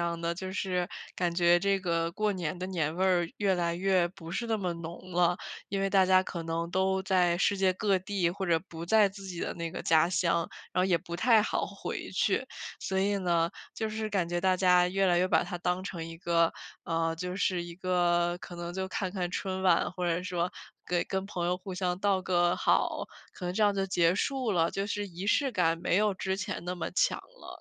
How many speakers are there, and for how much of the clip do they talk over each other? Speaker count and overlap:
one, no overlap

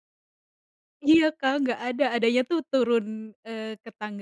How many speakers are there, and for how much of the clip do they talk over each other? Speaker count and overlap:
one, no overlap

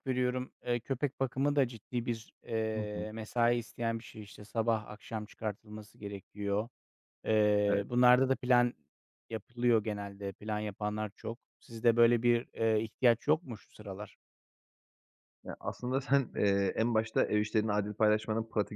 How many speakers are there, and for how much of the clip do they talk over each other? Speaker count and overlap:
two, about 2%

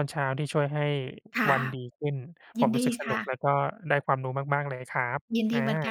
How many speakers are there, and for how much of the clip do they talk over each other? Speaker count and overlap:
two, about 16%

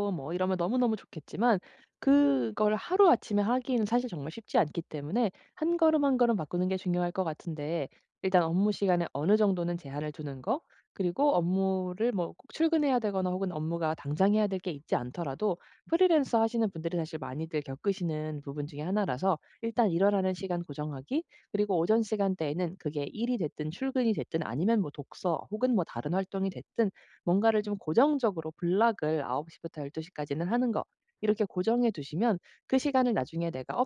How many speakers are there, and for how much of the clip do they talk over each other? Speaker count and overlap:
one, no overlap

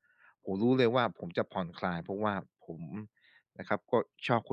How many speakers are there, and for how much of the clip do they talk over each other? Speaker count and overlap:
one, no overlap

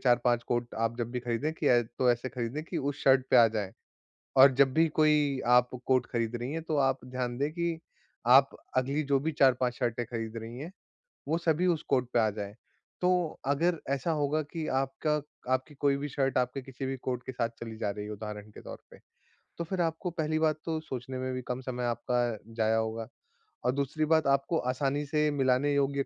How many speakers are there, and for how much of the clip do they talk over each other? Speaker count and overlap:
one, no overlap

